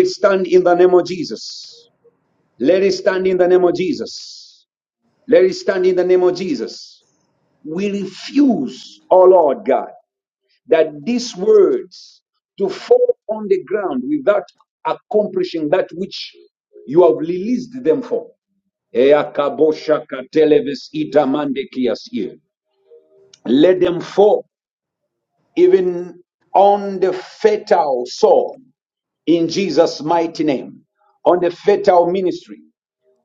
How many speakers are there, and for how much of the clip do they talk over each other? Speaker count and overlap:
1, no overlap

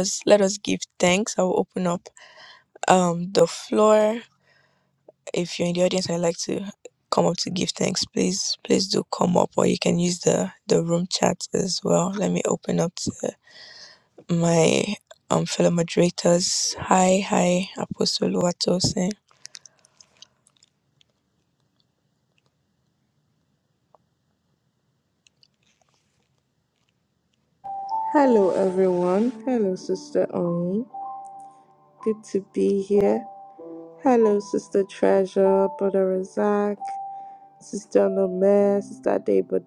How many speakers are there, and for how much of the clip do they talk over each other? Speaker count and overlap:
2, no overlap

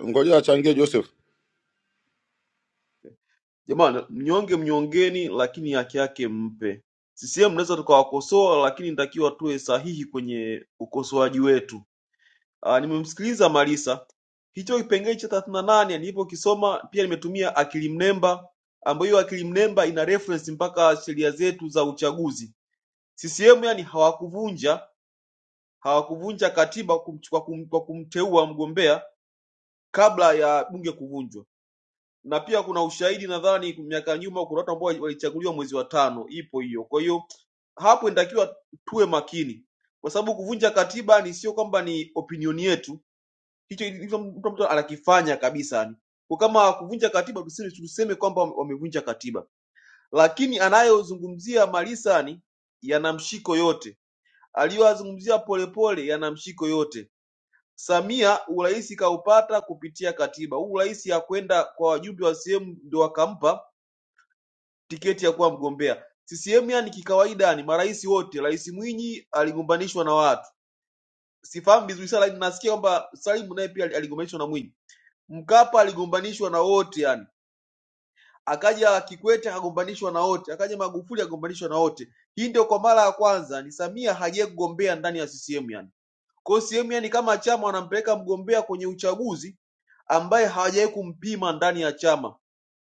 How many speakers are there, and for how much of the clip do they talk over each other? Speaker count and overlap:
2, no overlap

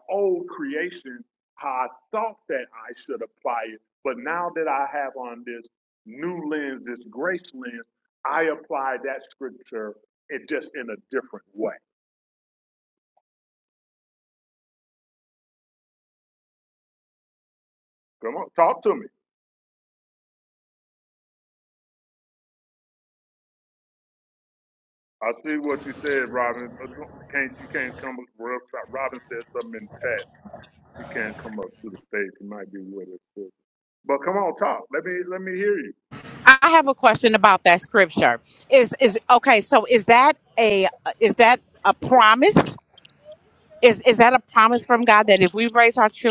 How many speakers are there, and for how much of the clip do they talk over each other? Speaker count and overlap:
2, no overlap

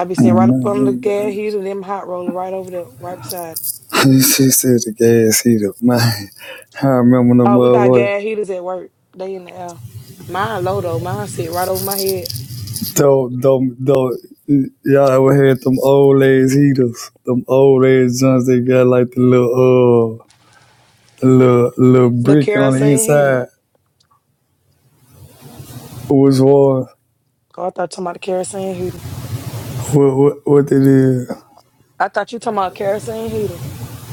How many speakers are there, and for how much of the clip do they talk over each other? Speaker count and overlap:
2, about 7%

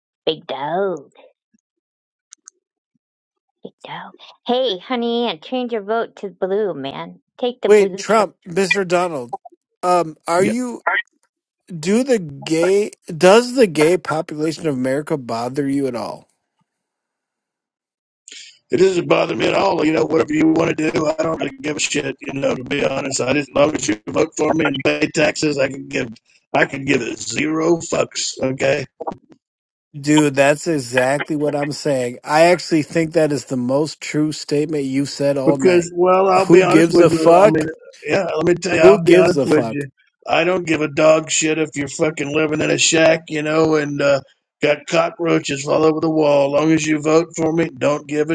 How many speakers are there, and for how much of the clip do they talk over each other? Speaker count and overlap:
3, about 7%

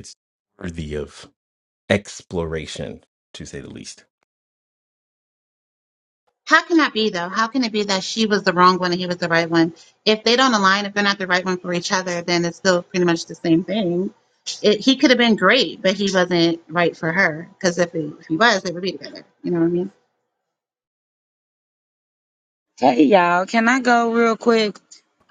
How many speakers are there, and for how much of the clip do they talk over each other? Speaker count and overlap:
3, no overlap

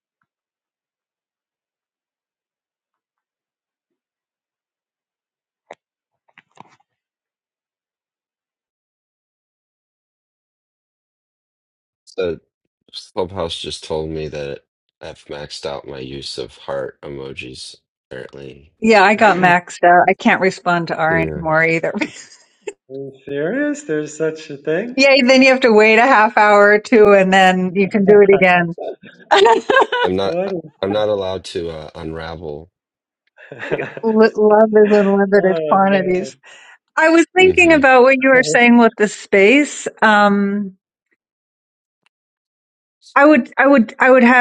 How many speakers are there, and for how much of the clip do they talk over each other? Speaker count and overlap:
3, about 7%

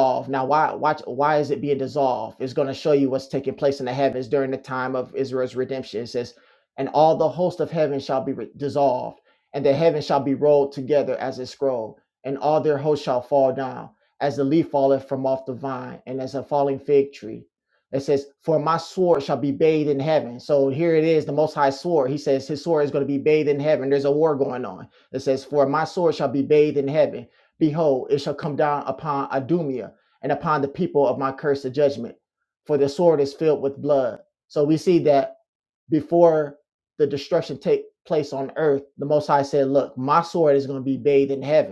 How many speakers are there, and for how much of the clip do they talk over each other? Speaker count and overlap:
1, no overlap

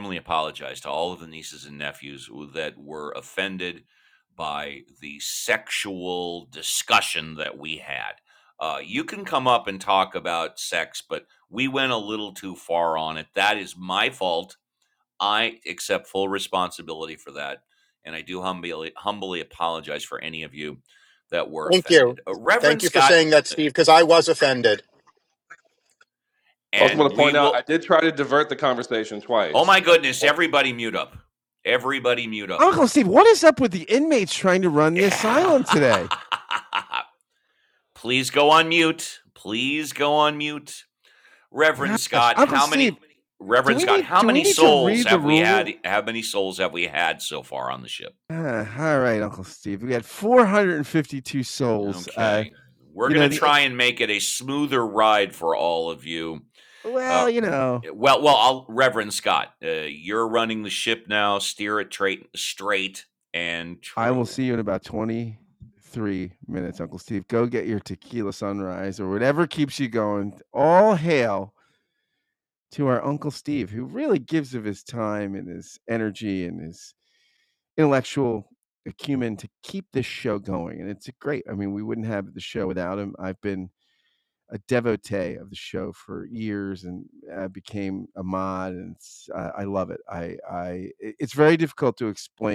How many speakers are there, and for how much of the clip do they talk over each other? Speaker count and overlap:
4, about 9%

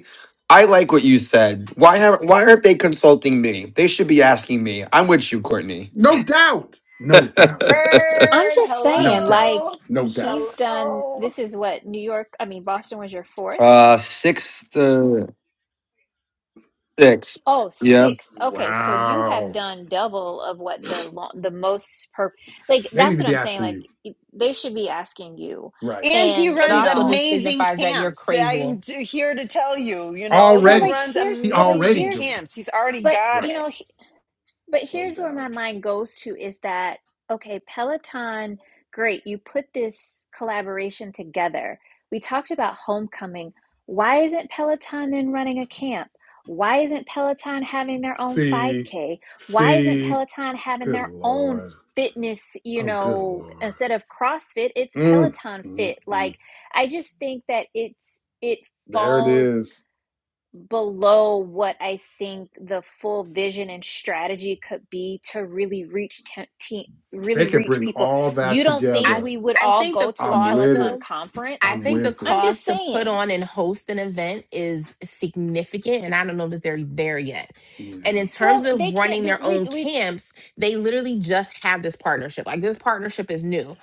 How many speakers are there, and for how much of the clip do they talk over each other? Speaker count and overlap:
5, about 26%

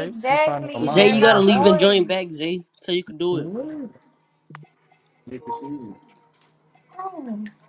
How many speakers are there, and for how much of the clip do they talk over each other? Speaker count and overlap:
3, about 31%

